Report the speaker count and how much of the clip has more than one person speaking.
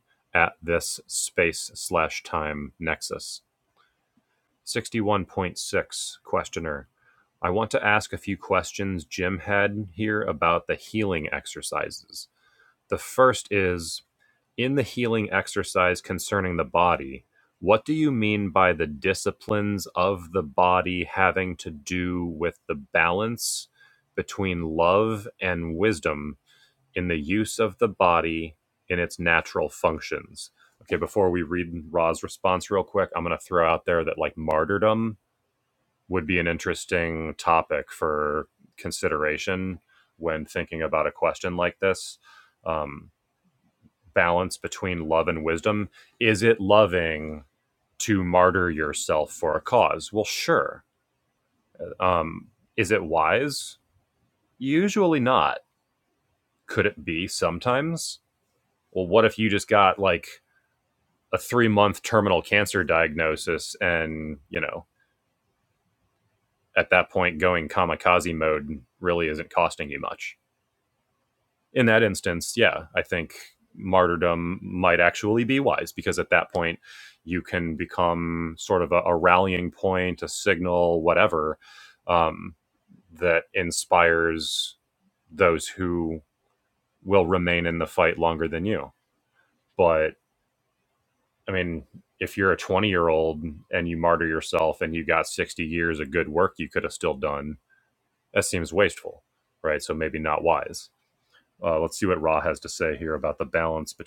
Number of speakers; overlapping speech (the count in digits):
1, no overlap